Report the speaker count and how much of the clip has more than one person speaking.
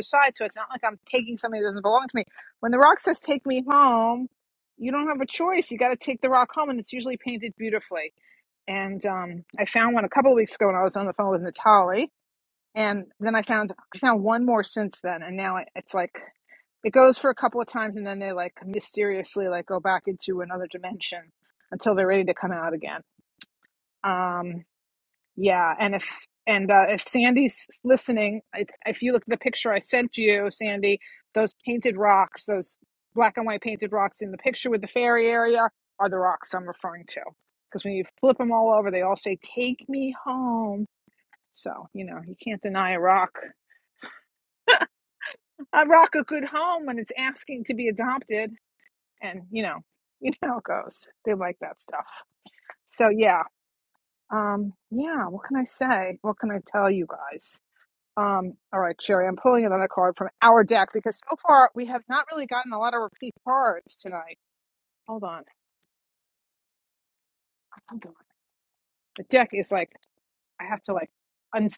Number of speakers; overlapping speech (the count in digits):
1, no overlap